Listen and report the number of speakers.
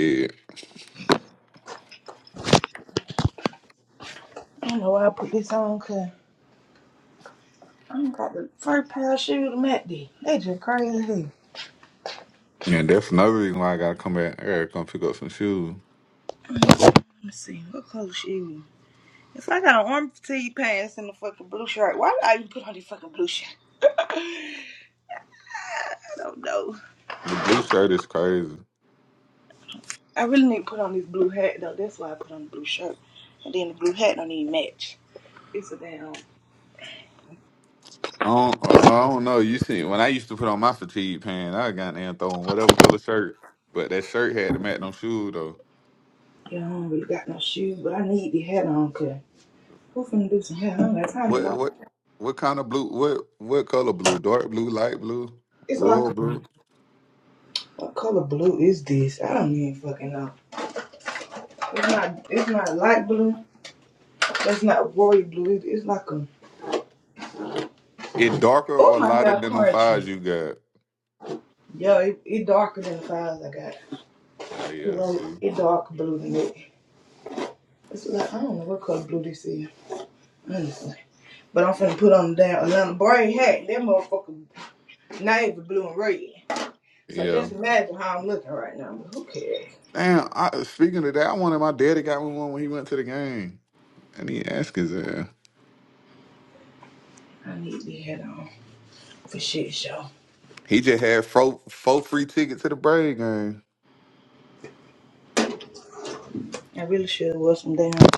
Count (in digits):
2